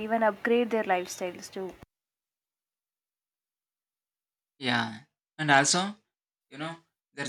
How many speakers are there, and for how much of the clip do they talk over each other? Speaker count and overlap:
2, no overlap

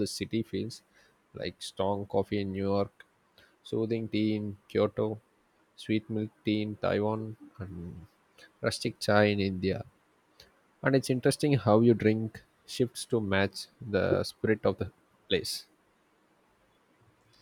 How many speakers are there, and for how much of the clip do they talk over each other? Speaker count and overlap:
1, no overlap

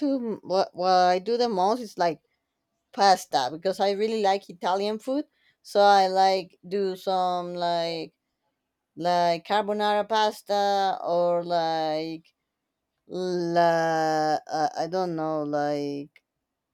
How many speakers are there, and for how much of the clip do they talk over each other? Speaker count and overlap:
1, no overlap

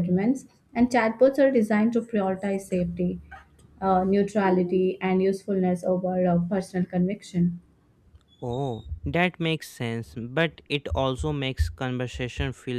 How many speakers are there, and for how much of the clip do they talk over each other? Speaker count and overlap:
2, no overlap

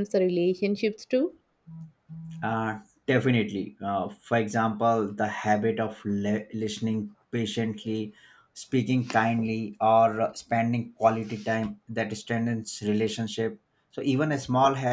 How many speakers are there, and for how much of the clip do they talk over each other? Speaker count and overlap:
2, no overlap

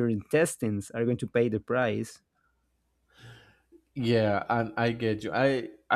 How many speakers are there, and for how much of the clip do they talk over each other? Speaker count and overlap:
2, no overlap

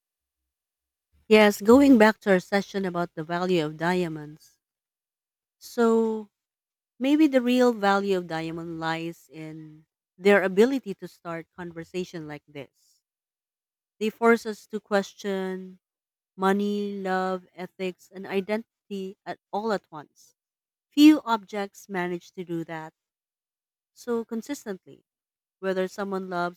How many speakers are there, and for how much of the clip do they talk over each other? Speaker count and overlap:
1, no overlap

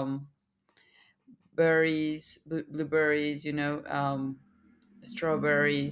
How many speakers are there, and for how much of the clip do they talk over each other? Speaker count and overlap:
1, no overlap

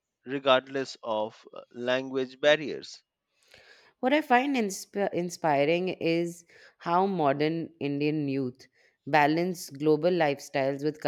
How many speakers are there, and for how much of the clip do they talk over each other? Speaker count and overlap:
2, no overlap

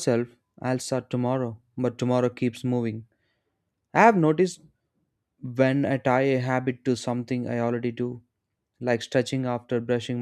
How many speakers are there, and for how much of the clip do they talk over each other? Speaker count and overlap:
1, no overlap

